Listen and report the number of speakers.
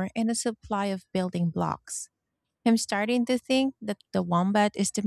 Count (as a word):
one